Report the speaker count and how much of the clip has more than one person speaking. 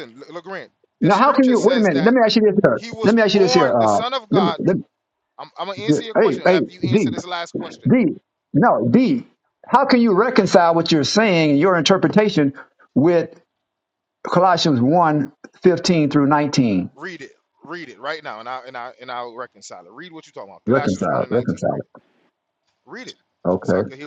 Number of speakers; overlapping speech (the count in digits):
2, about 23%